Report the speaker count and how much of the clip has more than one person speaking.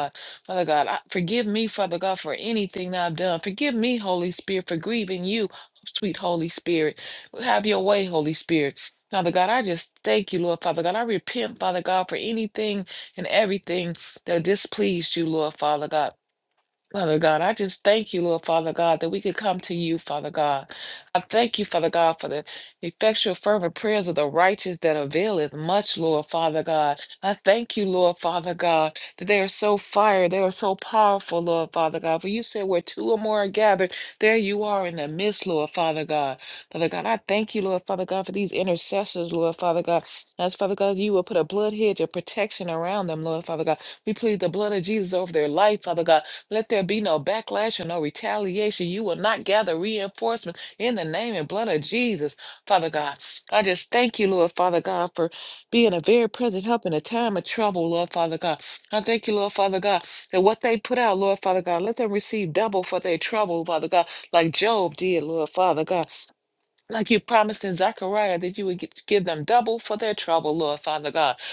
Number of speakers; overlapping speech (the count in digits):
1, no overlap